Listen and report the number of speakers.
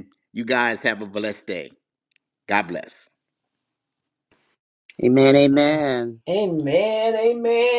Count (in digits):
3